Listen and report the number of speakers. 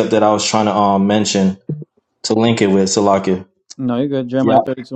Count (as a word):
two